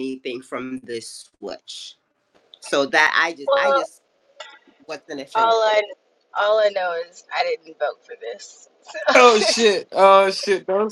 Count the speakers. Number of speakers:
3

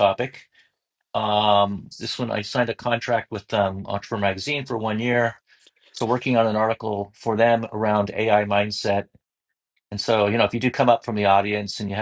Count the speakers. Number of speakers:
1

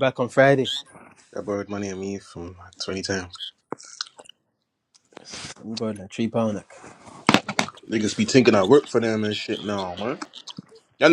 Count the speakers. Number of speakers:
2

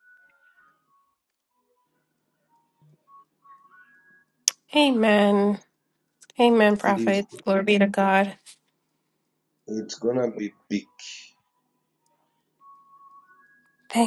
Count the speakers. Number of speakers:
2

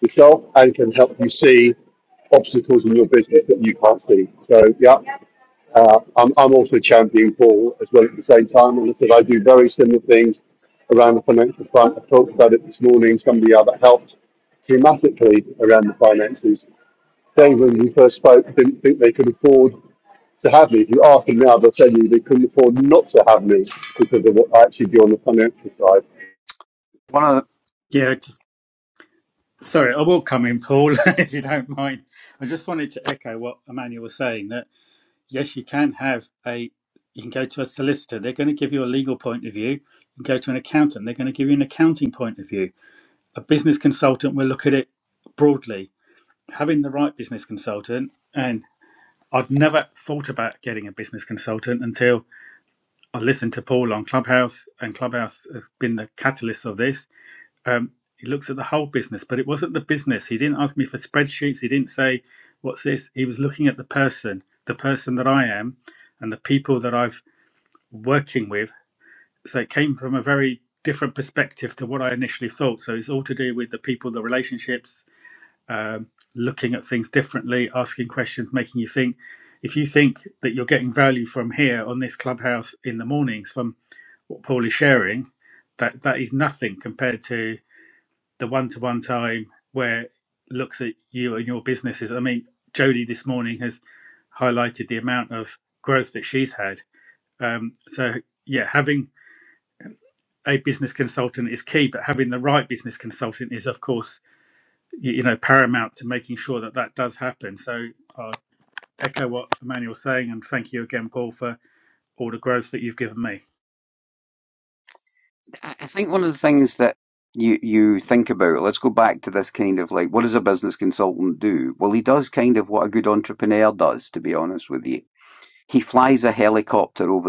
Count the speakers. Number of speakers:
3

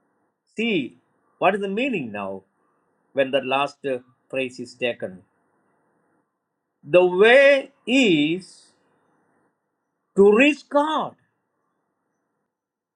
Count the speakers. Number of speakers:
1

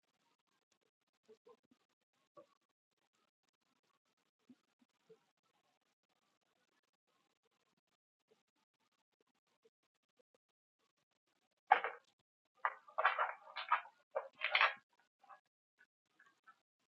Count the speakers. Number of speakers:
0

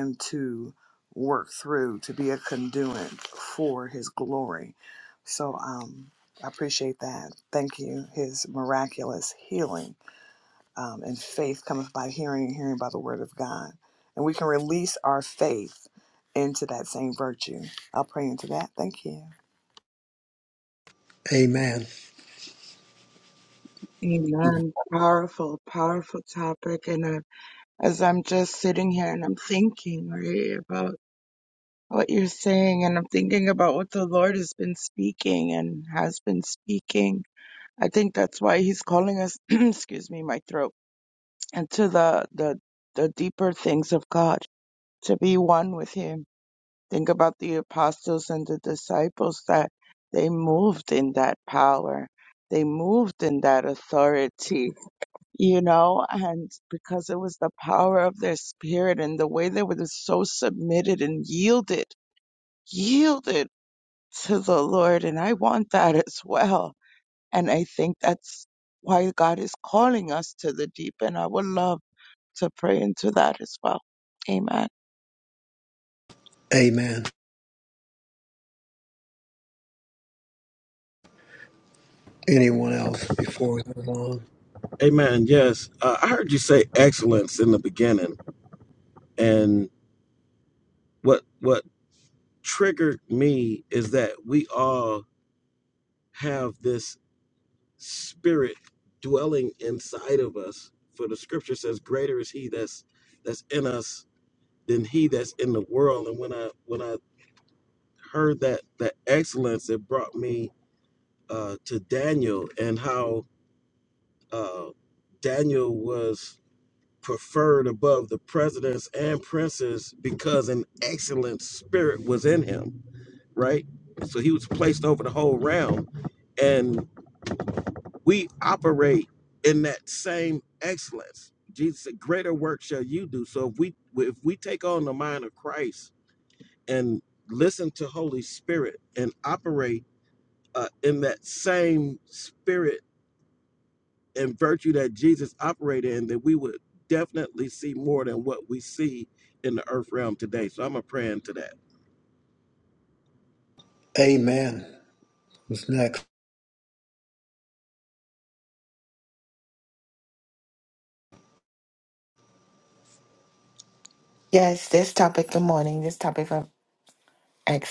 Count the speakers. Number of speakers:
5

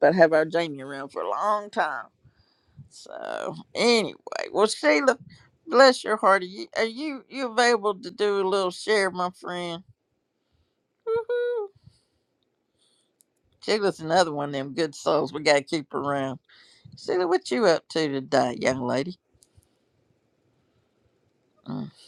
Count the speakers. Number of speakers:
1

